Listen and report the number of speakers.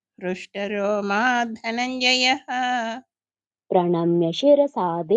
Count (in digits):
2